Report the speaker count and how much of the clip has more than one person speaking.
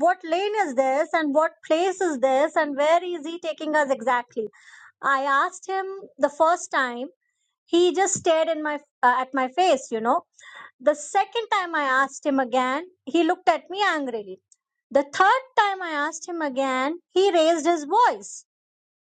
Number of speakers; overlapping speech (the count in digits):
1, no overlap